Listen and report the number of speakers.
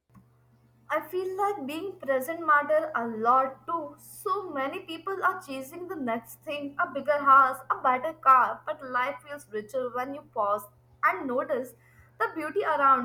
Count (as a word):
one